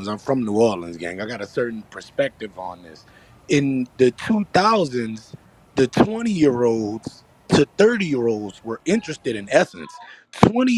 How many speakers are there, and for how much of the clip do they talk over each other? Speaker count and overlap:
1, no overlap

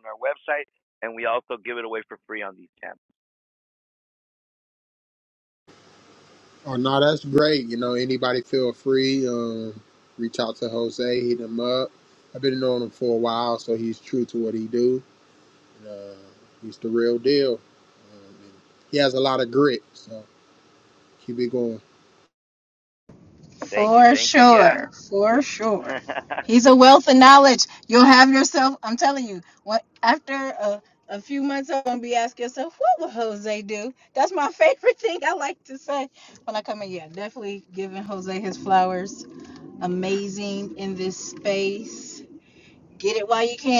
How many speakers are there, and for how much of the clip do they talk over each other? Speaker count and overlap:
3, about 2%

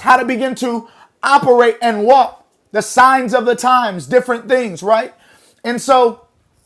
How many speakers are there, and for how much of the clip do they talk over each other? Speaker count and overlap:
1, no overlap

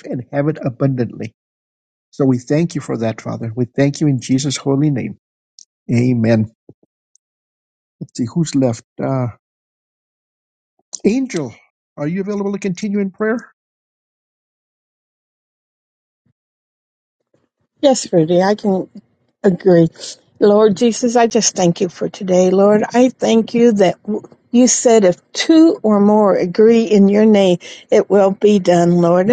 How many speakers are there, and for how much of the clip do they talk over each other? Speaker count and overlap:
2, no overlap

